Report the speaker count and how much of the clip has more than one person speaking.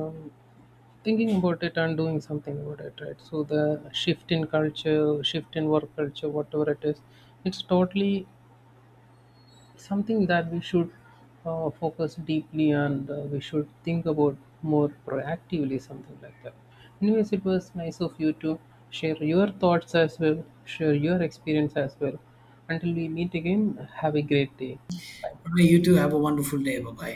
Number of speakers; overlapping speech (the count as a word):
two, no overlap